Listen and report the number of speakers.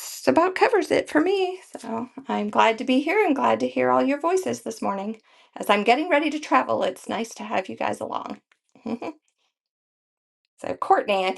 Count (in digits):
1